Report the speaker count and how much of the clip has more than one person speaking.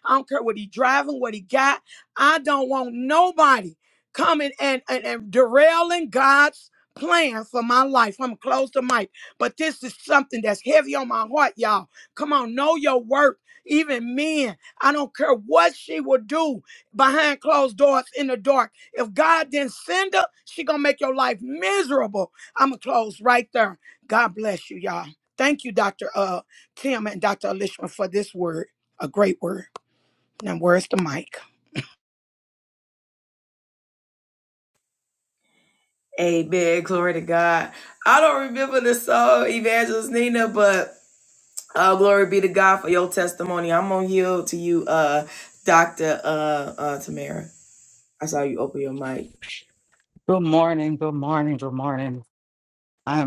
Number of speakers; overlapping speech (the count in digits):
3, no overlap